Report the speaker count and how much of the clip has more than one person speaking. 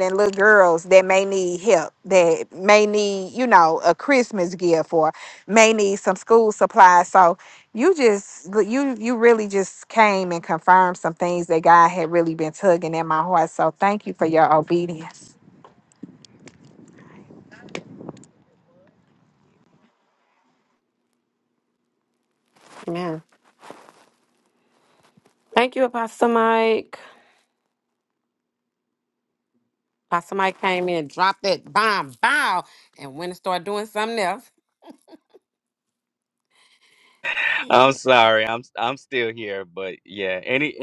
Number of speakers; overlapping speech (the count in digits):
3, no overlap